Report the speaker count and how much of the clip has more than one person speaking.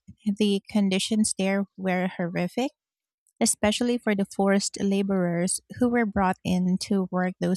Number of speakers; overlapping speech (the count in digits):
1, no overlap